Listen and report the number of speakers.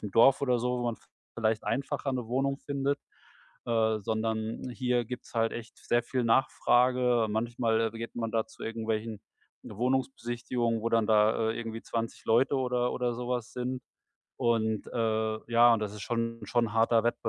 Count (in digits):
1